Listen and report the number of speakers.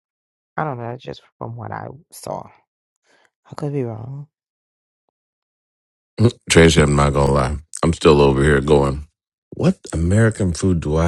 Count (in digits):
2